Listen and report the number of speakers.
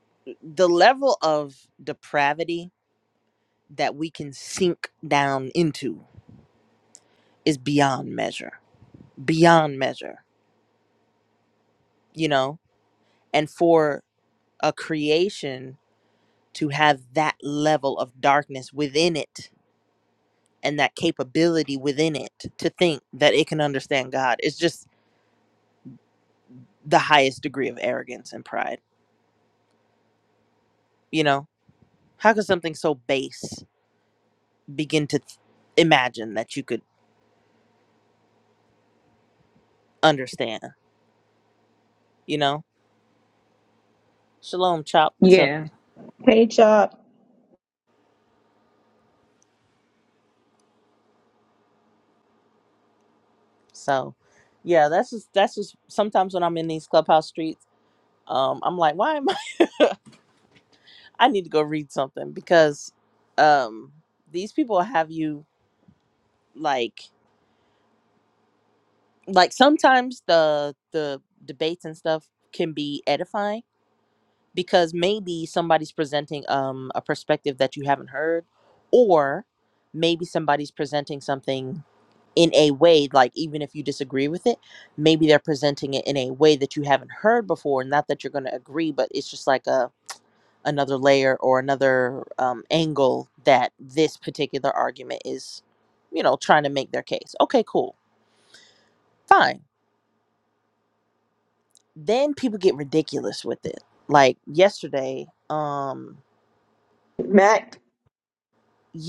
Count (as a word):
two